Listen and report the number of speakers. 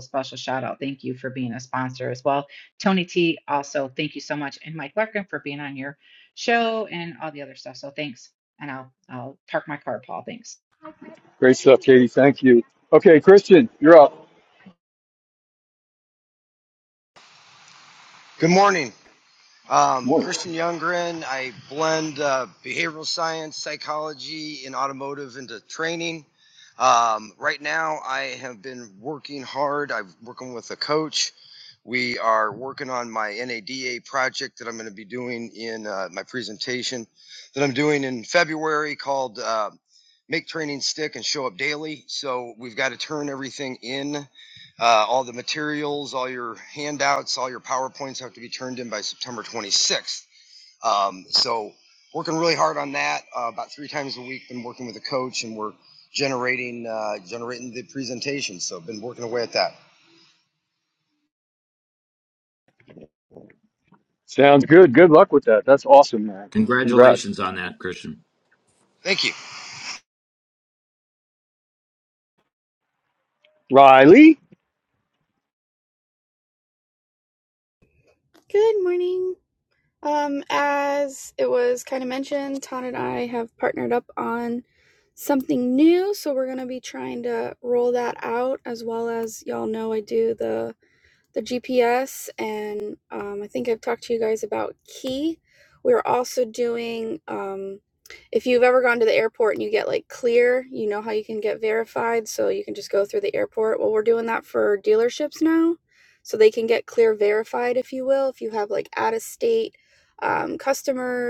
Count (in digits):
5